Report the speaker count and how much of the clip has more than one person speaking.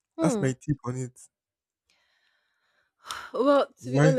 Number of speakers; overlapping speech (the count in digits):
2, about 15%